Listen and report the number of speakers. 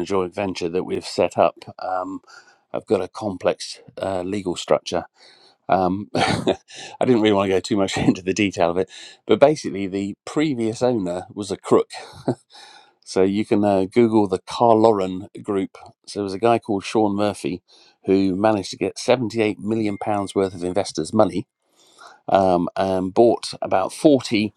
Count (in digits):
1